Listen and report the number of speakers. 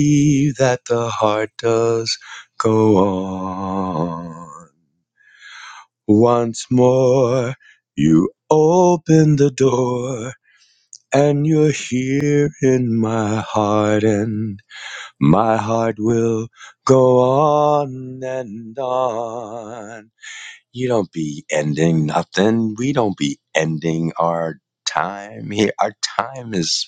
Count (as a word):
one